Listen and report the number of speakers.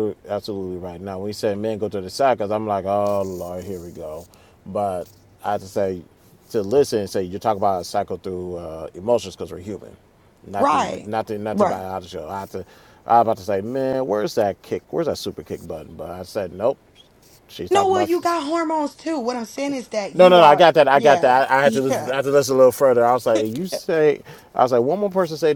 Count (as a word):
two